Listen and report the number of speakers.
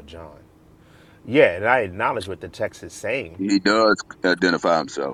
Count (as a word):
two